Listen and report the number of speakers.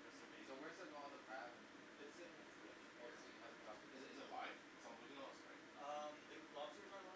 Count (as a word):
three